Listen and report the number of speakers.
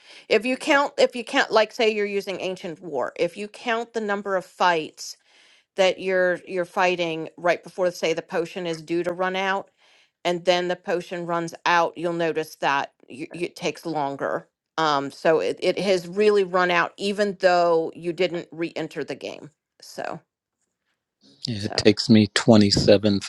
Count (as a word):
two